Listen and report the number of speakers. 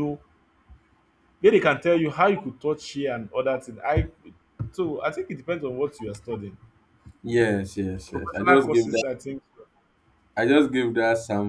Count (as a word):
two